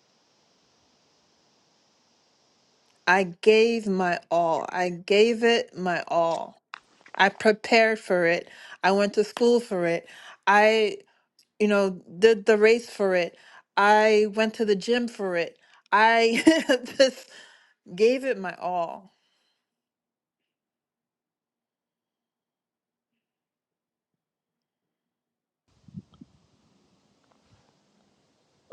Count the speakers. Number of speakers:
one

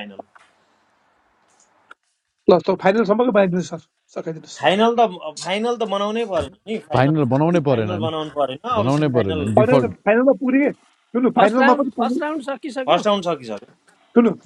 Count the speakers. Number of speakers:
four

